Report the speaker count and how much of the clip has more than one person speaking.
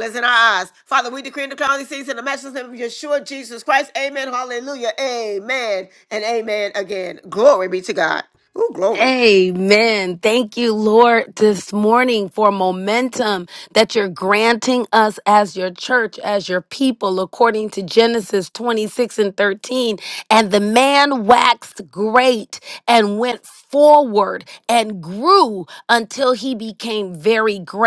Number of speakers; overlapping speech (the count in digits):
2, about 1%